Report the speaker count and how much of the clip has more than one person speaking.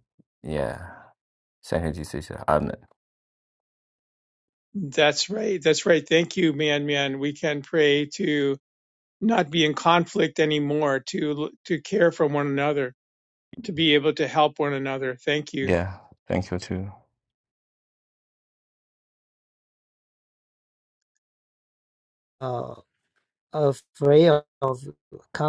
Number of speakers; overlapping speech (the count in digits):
3, under 1%